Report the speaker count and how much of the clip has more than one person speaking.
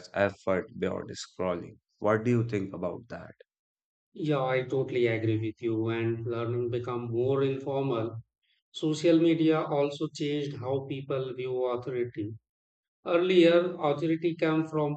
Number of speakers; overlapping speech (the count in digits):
2, no overlap